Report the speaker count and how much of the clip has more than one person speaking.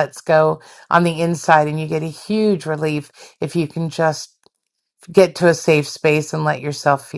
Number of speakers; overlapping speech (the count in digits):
1, no overlap